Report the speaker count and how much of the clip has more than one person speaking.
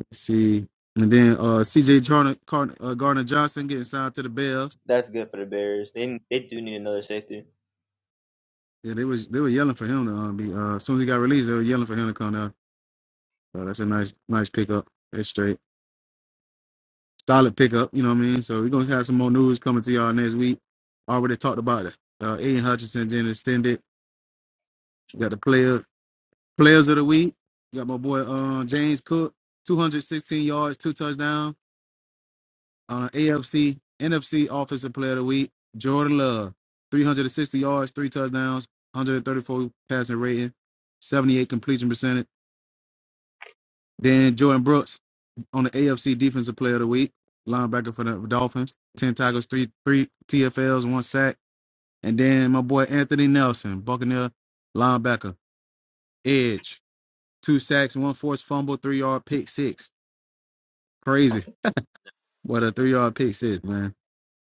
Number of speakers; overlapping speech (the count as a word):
two, no overlap